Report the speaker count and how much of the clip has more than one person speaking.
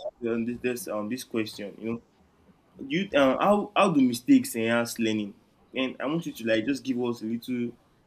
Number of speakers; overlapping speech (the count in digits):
1, no overlap